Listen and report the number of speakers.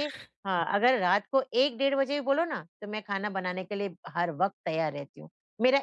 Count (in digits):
1